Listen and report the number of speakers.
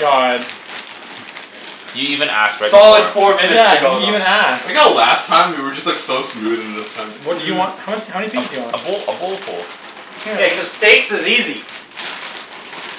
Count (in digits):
4